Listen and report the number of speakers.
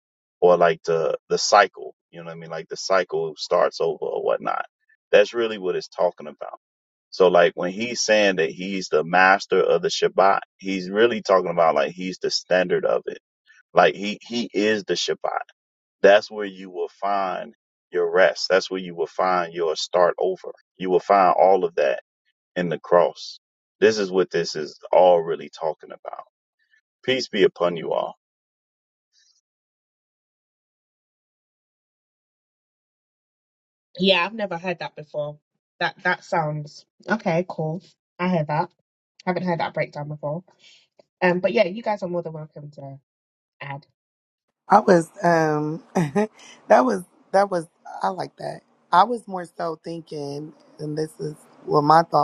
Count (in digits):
3